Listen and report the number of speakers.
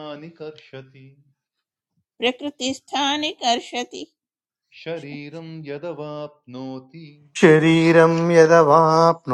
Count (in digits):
3